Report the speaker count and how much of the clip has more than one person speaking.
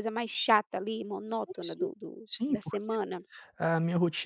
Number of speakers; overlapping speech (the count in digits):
2, about 25%